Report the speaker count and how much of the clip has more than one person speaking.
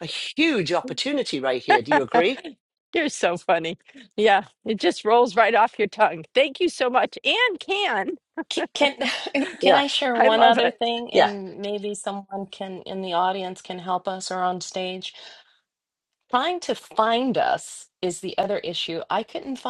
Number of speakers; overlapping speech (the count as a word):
three, about 5%